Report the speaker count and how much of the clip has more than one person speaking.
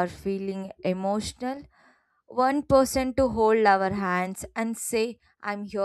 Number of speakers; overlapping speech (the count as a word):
one, no overlap